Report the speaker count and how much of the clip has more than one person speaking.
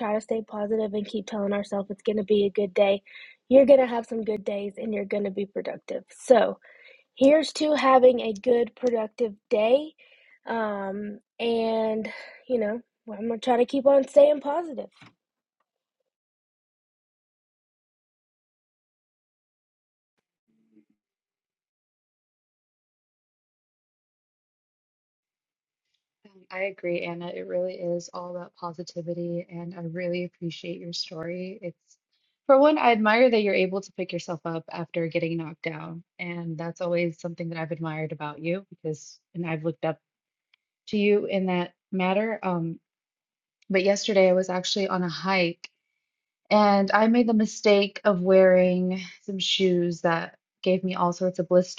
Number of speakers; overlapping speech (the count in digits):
2, no overlap